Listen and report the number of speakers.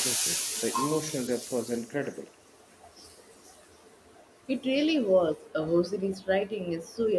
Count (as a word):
two